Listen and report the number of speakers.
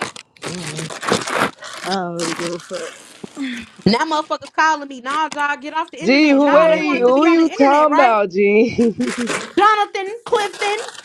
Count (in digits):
3